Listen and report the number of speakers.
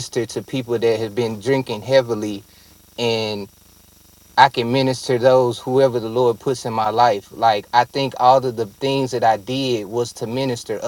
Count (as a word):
one